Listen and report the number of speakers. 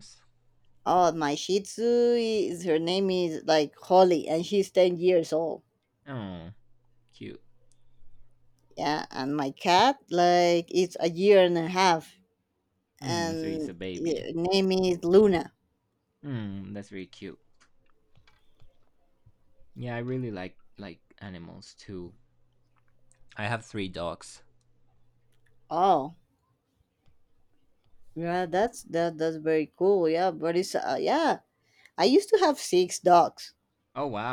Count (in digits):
2